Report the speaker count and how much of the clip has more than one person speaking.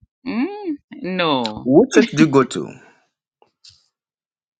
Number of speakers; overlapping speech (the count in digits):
2, no overlap